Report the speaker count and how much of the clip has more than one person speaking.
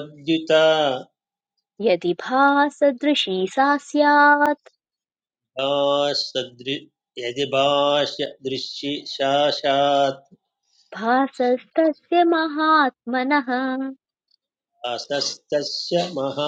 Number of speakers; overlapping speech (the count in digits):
2, no overlap